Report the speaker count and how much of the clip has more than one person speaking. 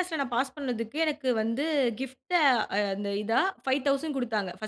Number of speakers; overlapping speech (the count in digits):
1, no overlap